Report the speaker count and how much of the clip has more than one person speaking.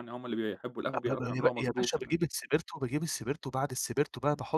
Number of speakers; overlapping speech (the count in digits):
2, about 23%